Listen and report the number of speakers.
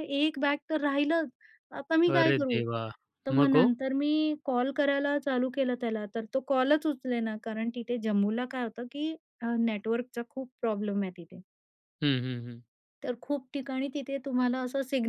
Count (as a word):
two